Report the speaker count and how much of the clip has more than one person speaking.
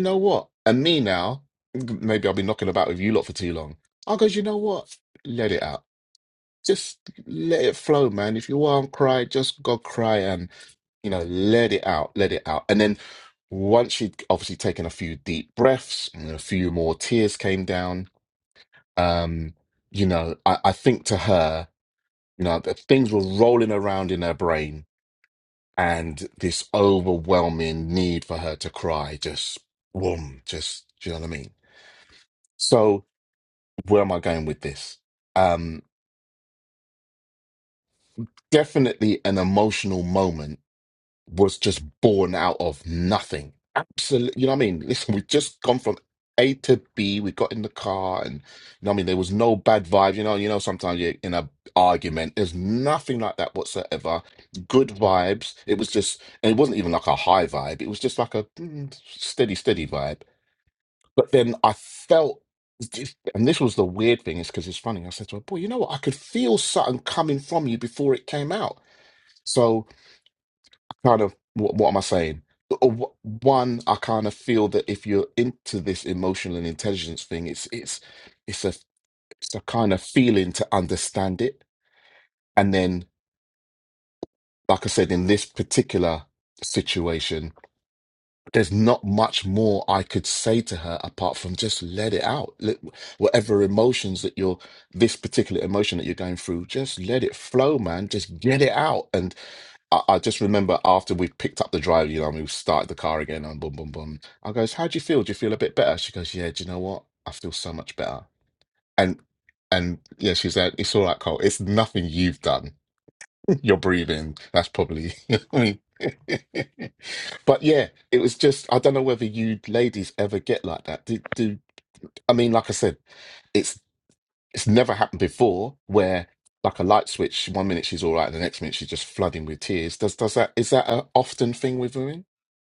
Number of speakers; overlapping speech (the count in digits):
1, no overlap